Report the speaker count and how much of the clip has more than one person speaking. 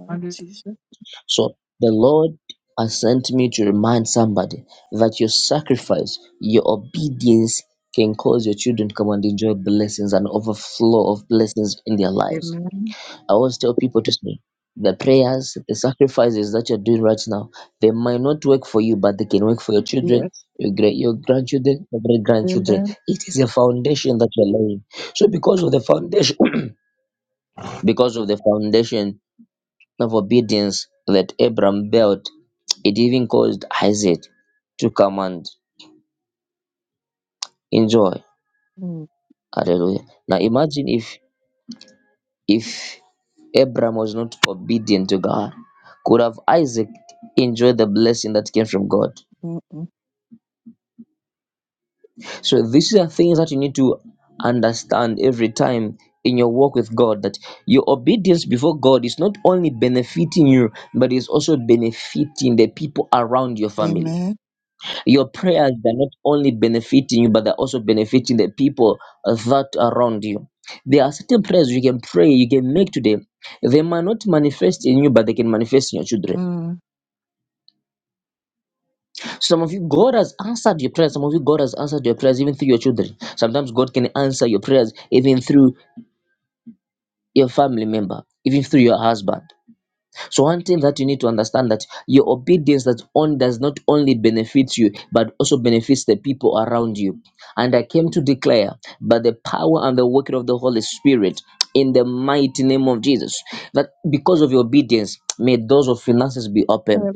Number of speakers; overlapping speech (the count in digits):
2, about 1%